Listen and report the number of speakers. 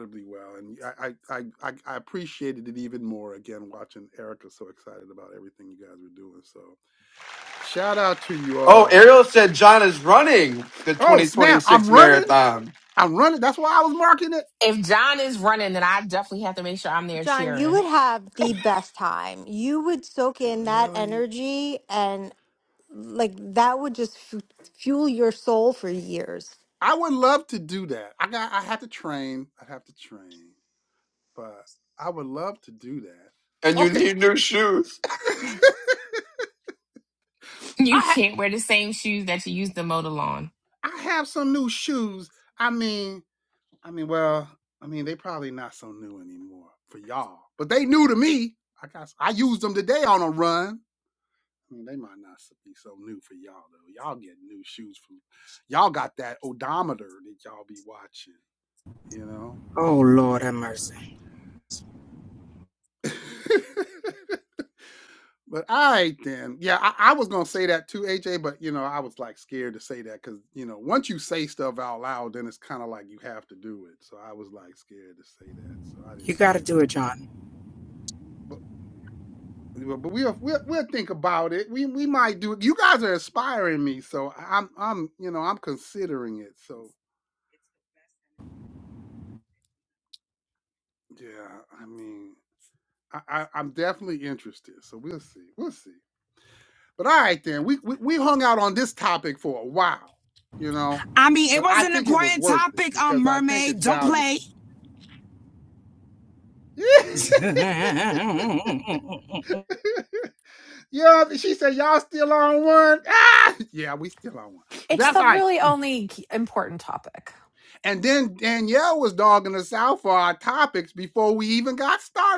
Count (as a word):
six